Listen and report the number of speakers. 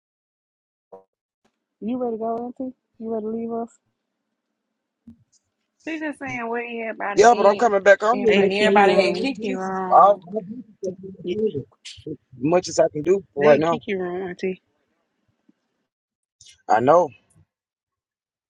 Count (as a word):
three